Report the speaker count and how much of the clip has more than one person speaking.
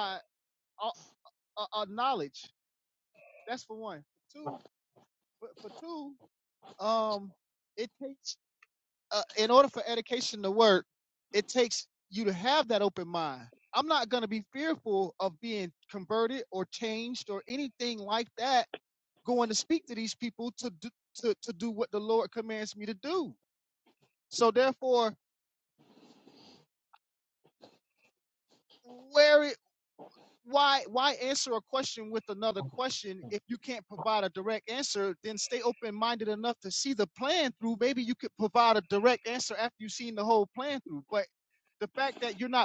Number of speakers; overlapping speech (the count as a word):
one, no overlap